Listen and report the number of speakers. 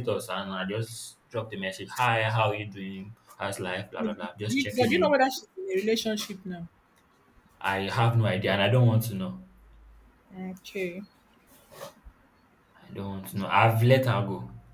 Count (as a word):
two